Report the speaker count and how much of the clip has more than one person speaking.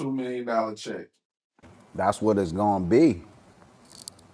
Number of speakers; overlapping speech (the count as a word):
two, no overlap